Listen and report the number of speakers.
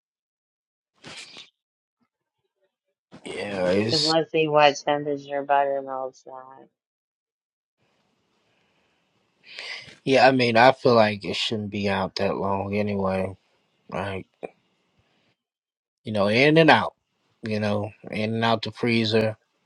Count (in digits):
2